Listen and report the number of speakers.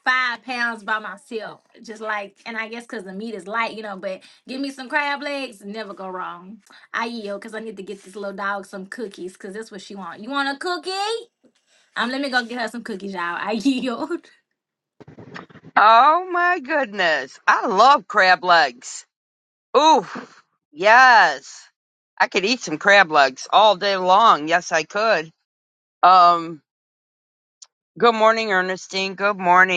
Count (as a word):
two